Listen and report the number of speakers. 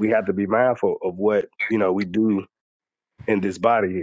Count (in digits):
1